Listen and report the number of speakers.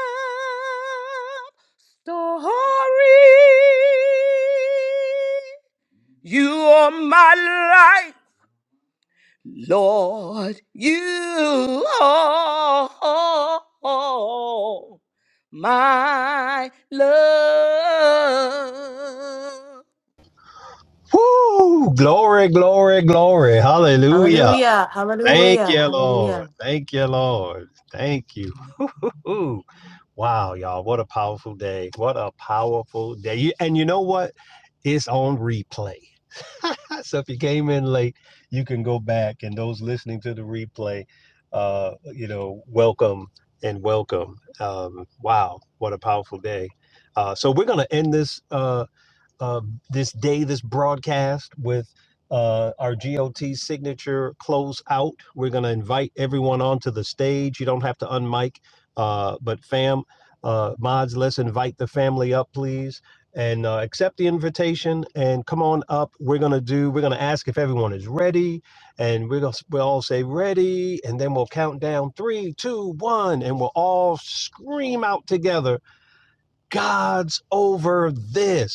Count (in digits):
3